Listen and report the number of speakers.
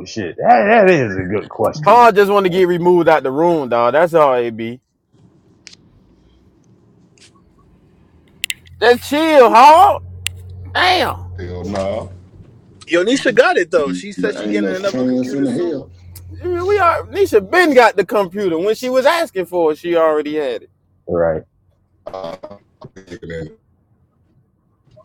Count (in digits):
4